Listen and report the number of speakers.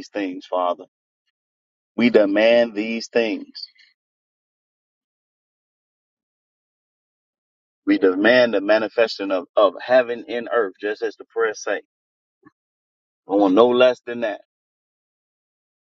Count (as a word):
one